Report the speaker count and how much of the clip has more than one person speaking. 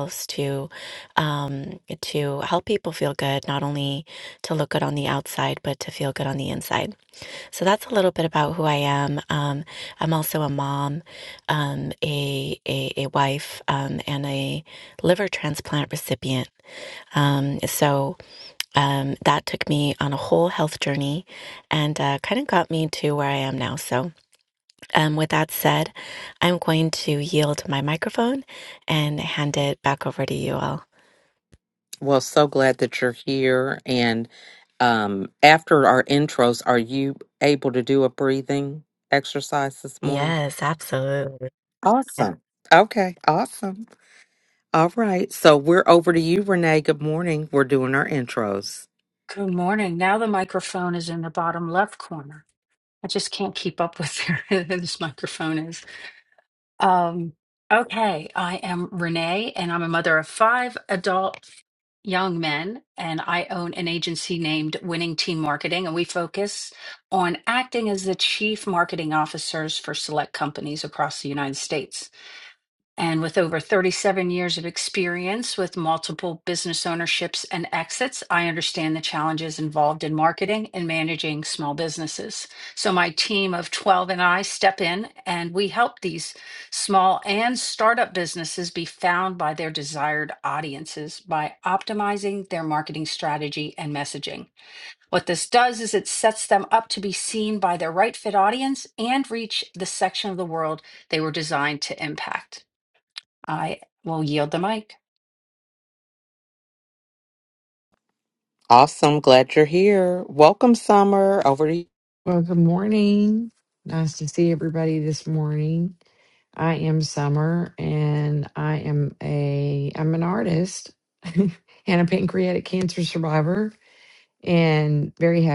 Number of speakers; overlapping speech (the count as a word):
four, under 1%